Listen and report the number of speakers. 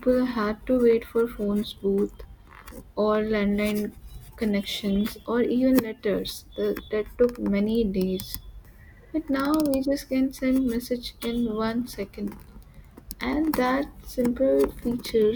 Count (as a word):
one